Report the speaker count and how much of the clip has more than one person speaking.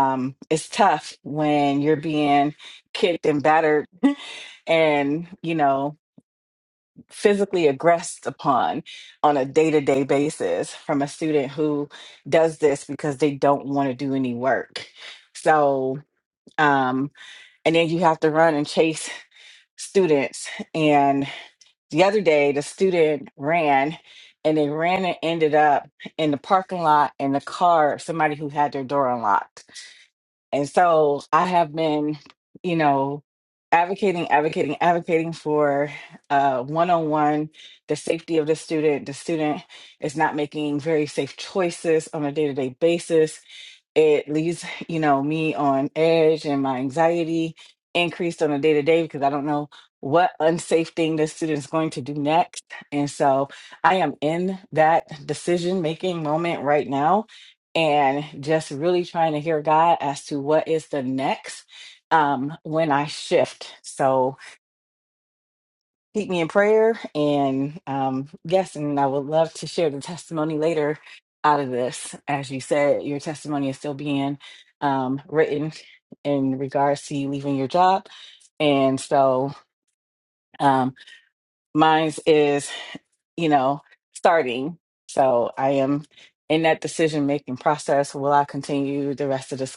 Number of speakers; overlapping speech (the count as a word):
one, no overlap